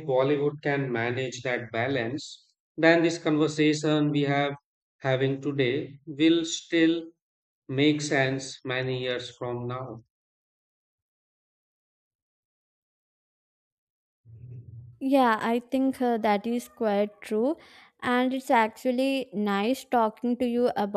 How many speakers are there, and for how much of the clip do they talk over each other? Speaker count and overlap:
two, no overlap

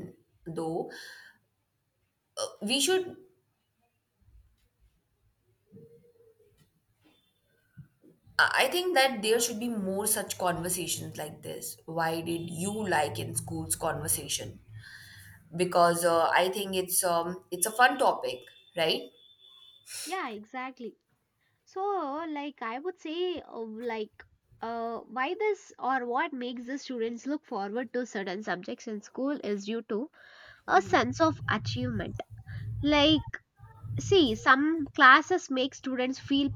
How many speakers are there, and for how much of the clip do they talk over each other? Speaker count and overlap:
two, no overlap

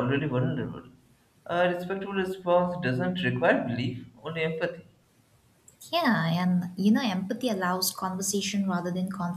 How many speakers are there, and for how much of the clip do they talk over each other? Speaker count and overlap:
two, no overlap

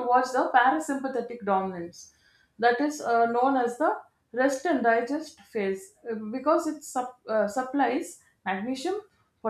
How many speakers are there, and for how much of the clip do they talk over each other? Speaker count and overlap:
one, no overlap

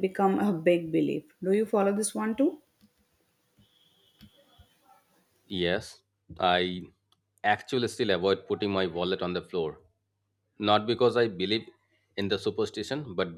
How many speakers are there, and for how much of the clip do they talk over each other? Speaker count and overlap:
two, no overlap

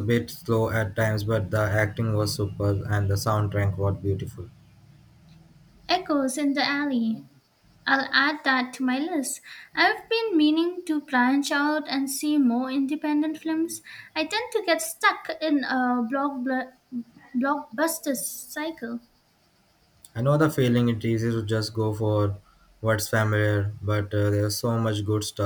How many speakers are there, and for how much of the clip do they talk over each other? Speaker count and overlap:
two, no overlap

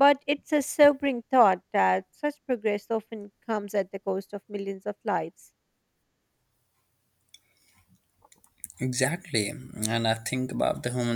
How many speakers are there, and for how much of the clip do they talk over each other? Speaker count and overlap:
two, no overlap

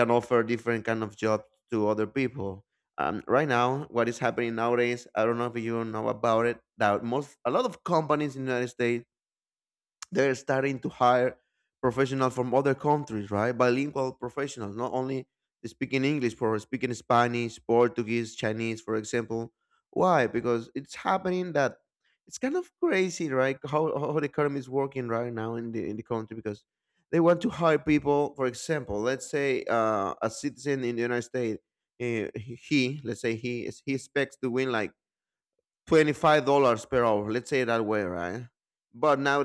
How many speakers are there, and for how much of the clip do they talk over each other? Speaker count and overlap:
one, no overlap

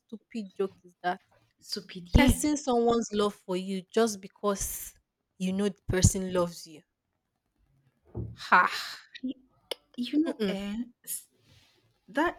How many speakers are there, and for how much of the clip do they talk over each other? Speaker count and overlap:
two, about 4%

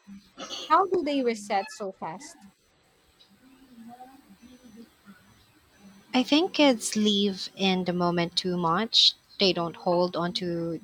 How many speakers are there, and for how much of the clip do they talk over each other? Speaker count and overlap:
two, no overlap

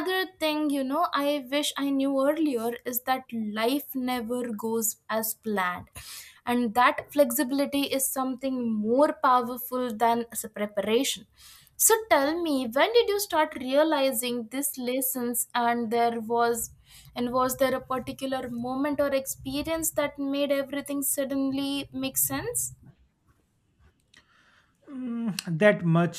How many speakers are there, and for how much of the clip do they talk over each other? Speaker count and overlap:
two, no overlap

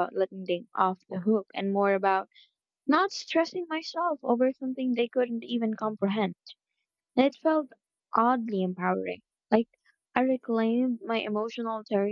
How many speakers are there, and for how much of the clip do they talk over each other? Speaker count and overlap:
one, no overlap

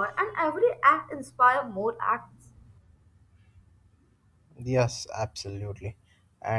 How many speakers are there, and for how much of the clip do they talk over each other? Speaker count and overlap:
two, no overlap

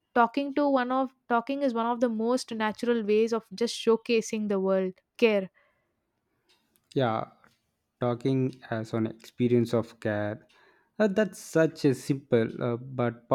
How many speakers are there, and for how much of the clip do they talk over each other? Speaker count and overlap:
two, no overlap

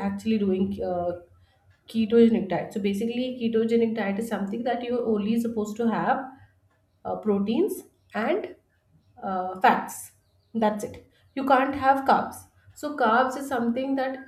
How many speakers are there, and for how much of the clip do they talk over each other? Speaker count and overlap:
one, no overlap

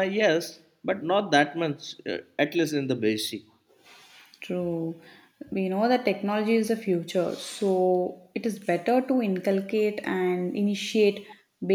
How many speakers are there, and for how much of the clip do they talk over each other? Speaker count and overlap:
two, no overlap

